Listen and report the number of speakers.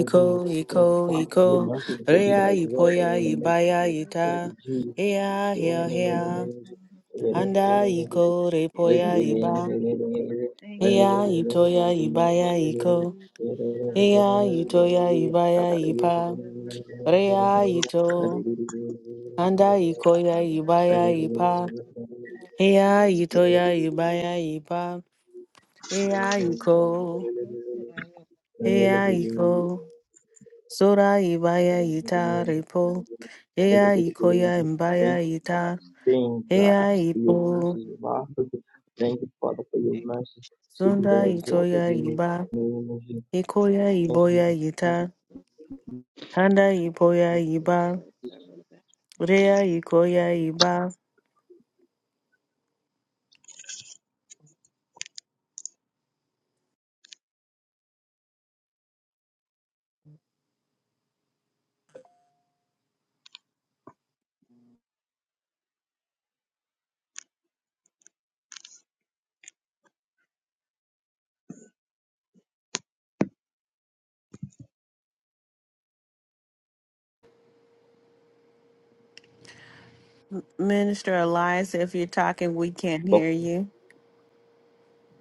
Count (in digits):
3